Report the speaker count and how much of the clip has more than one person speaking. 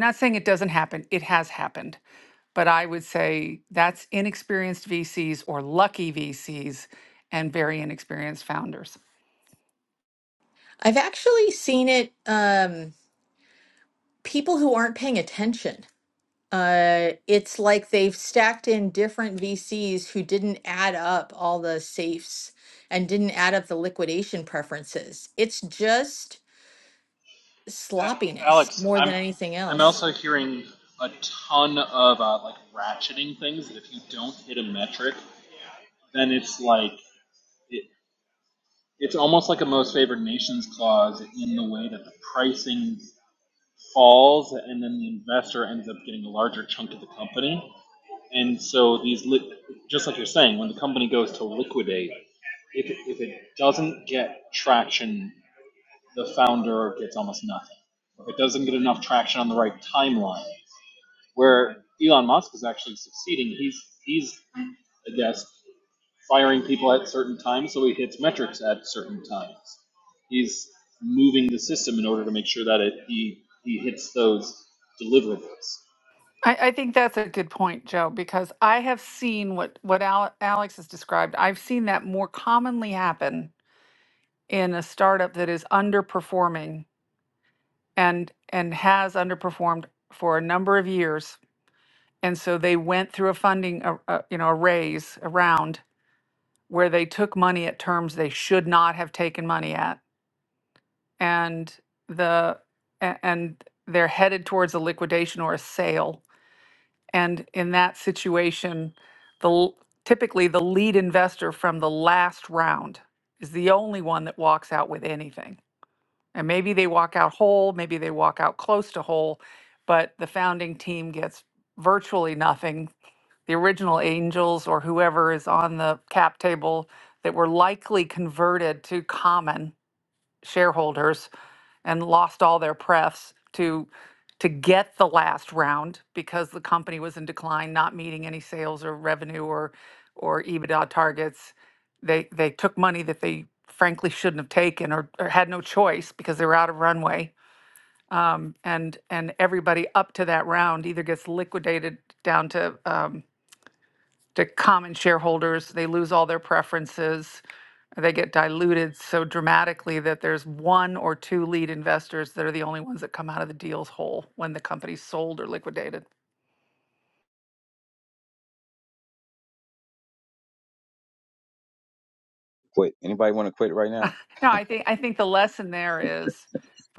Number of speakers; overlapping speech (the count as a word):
four, about 1%